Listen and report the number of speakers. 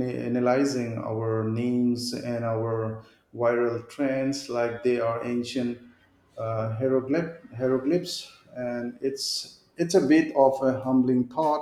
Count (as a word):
one